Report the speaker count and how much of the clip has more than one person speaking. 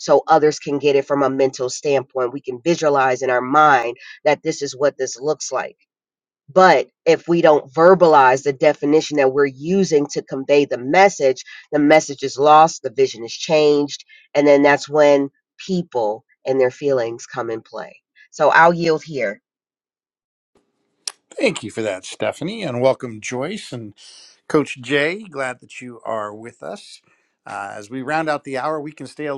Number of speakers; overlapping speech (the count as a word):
two, no overlap